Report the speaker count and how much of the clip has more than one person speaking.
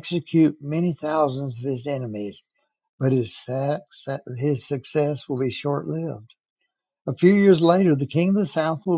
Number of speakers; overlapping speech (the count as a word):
one, no overlap